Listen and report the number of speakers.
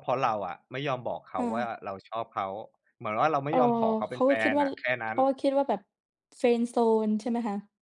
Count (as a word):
two